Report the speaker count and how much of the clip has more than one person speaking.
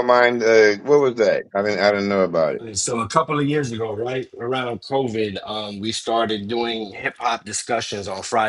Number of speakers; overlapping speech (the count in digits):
2, no overlap